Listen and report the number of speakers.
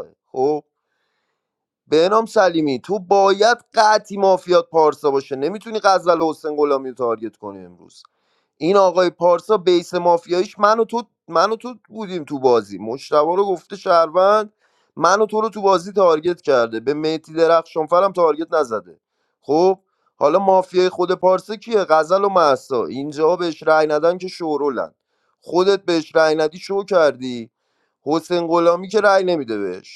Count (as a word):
one